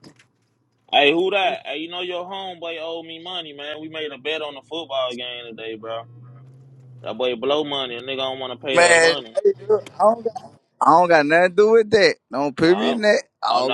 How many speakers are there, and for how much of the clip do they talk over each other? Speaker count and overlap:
two, about 9%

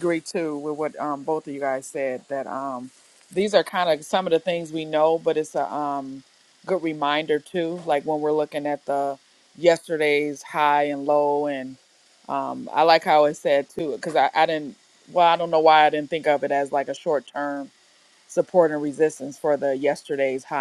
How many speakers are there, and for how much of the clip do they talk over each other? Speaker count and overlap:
one, no overlap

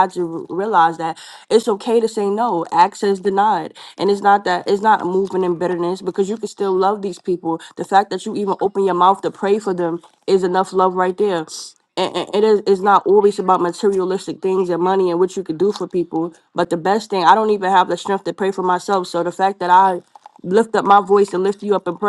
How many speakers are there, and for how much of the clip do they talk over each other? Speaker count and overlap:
one, no overlap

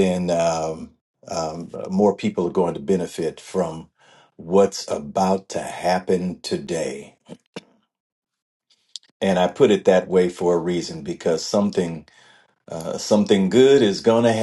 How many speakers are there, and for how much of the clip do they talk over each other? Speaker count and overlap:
one, no overlap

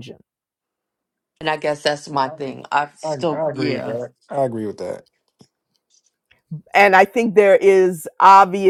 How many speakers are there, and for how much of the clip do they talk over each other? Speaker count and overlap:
three, about 12%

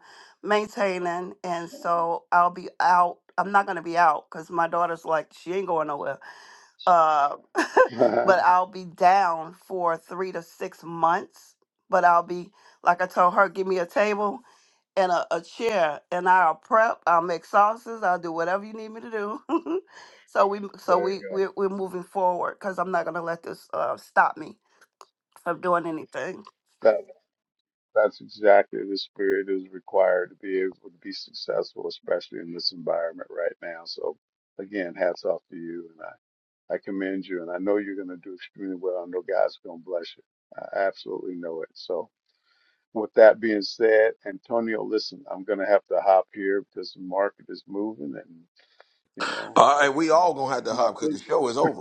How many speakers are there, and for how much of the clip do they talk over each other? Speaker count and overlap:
three, about 1%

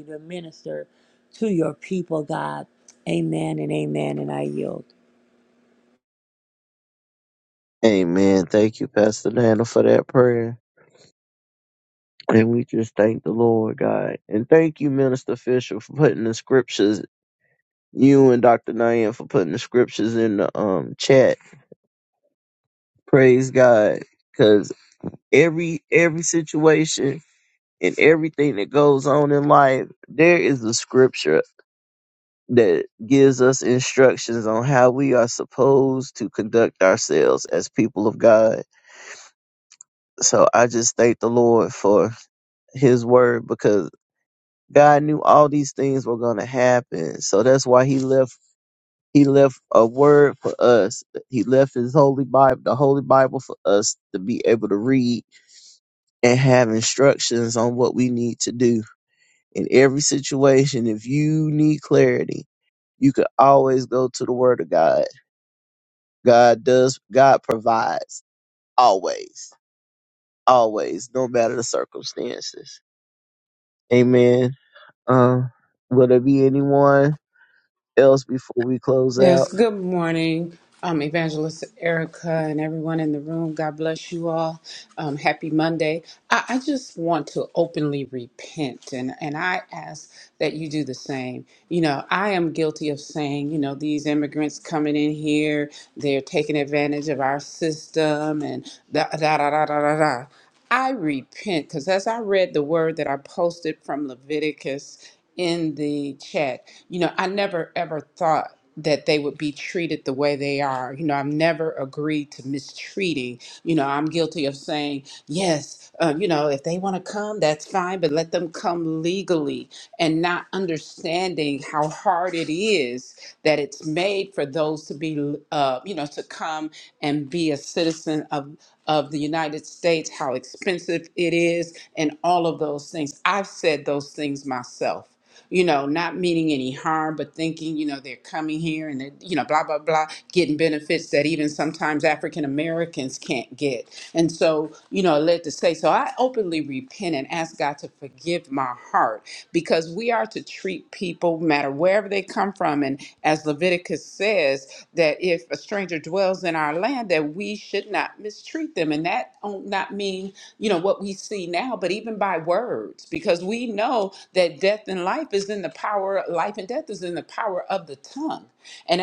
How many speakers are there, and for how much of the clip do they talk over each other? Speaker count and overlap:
three, under 1%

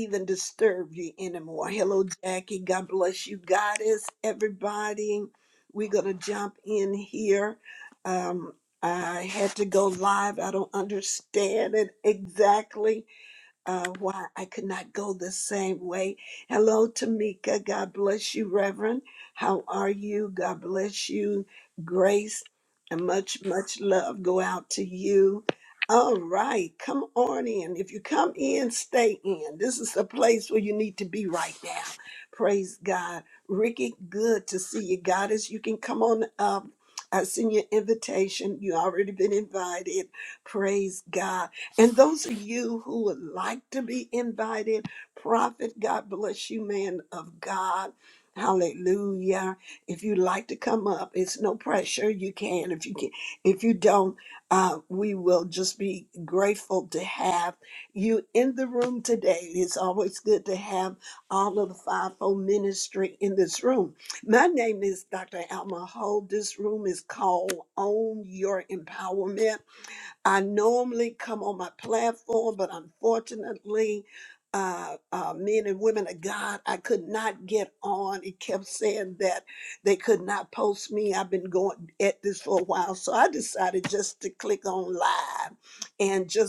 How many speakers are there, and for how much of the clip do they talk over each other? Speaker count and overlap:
one, no overlap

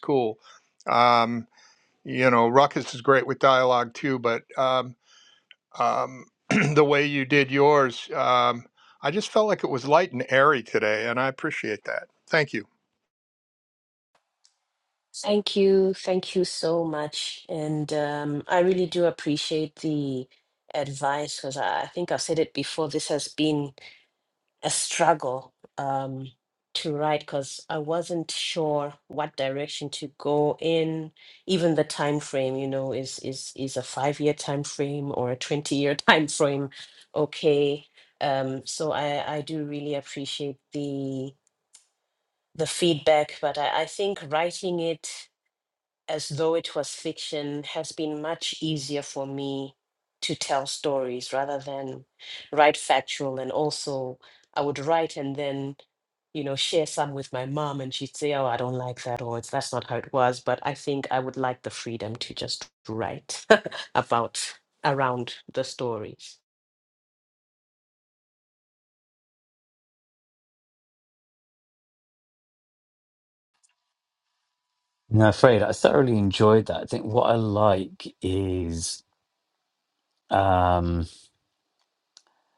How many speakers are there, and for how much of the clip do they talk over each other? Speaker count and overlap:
three, no overlap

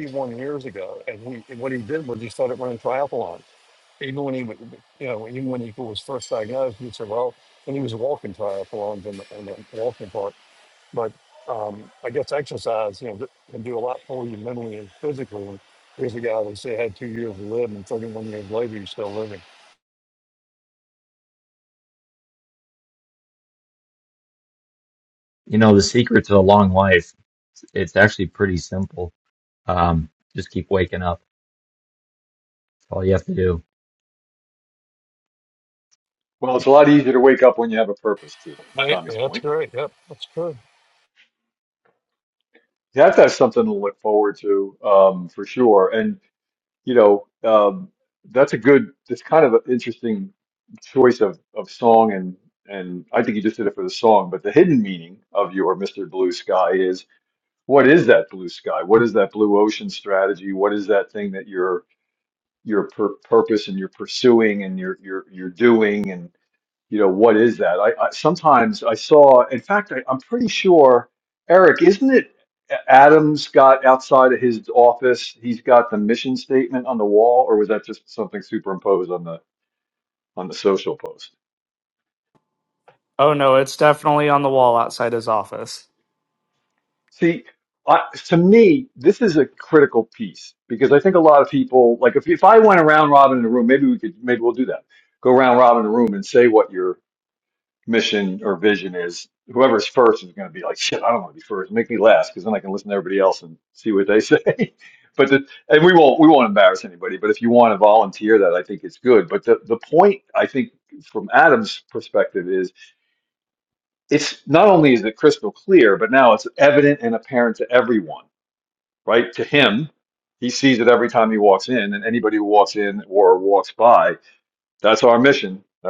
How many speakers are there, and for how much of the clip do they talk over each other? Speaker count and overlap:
four, under 1%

